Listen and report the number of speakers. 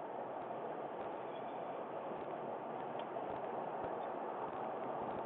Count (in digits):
0